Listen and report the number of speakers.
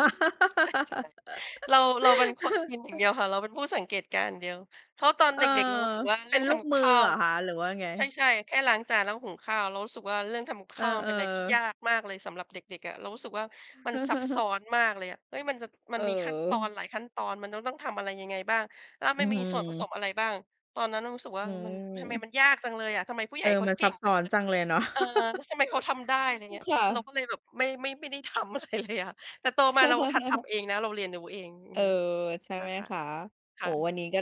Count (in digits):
2